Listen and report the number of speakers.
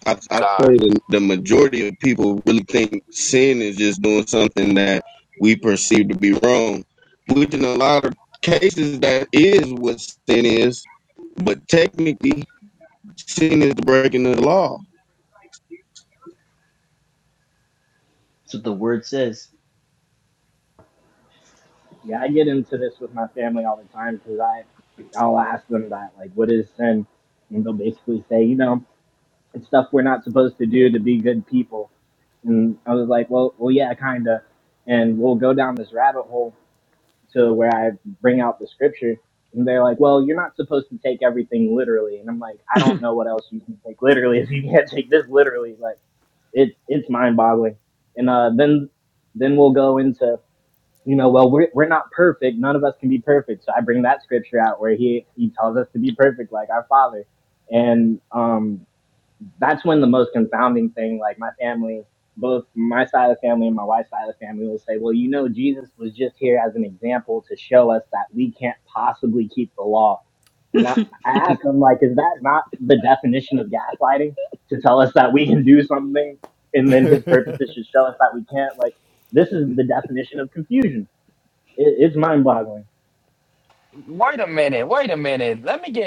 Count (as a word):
four